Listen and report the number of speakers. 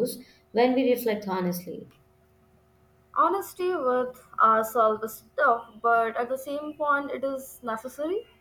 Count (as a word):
two